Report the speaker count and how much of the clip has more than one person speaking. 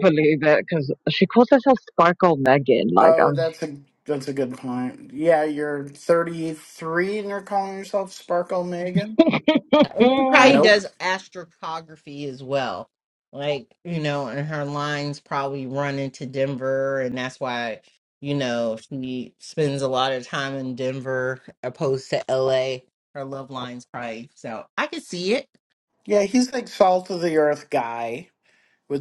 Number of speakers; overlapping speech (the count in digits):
3, about 4%